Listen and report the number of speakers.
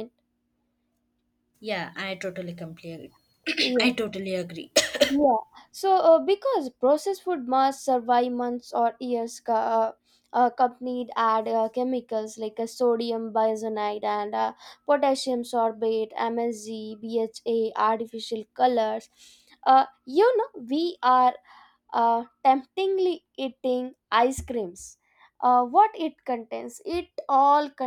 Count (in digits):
2